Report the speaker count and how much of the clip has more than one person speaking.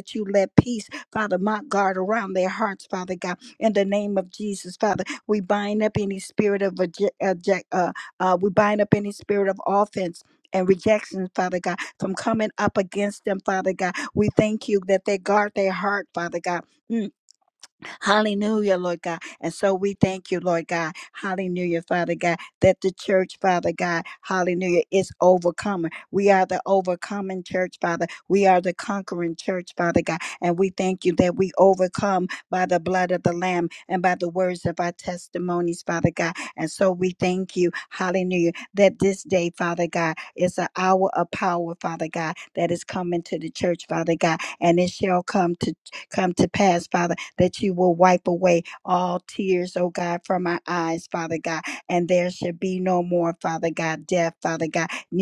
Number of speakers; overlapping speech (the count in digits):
1, no overlap